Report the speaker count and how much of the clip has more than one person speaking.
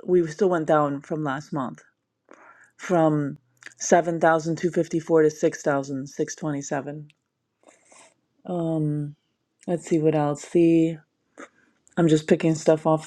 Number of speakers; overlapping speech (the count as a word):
one, no overlap